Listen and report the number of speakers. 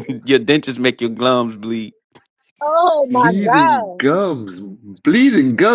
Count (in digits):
3